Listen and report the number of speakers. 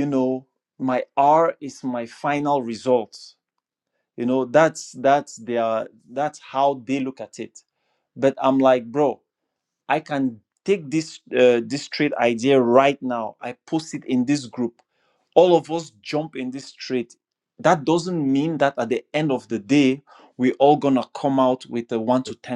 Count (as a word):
one